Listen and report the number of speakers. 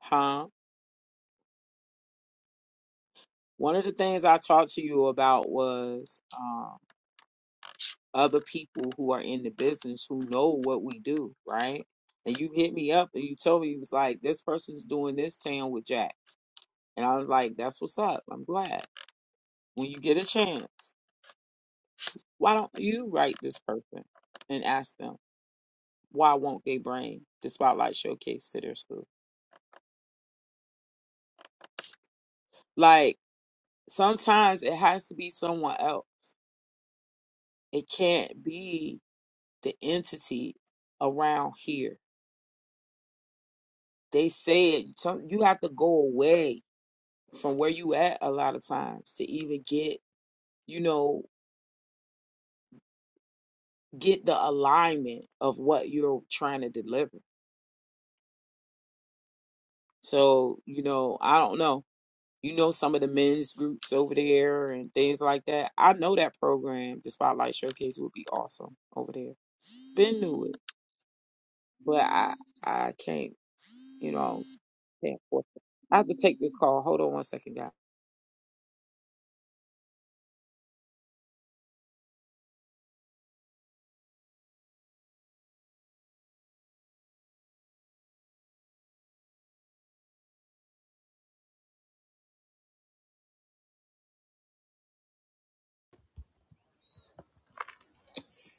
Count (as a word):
one